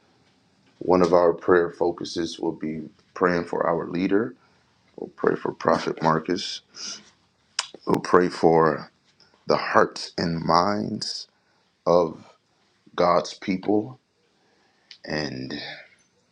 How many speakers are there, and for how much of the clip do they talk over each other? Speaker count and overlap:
one, no overlap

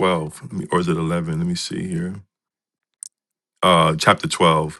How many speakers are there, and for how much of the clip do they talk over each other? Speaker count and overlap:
one, no overlap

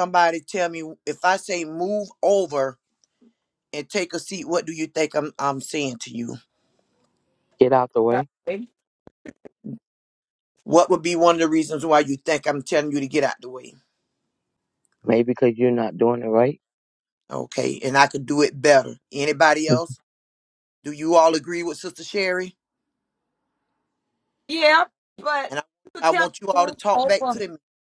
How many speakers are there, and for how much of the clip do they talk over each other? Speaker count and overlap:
three, about 5%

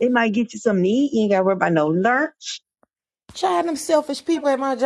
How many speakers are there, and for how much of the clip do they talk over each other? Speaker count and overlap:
two, no overlap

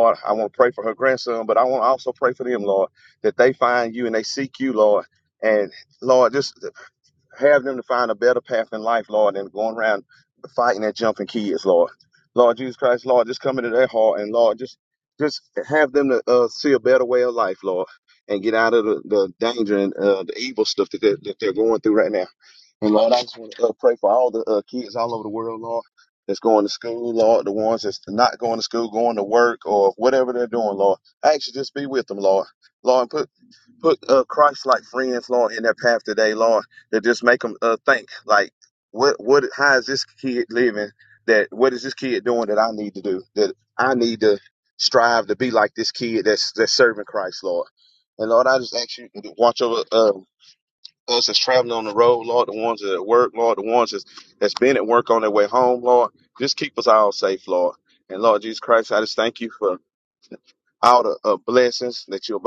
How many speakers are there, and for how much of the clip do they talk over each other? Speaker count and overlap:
one, no overlap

